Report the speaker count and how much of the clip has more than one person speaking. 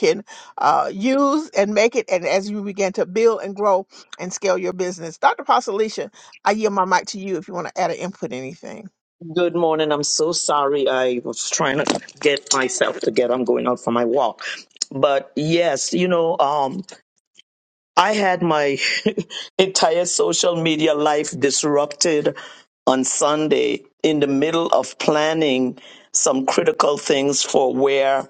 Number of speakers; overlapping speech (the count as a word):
two, no overlap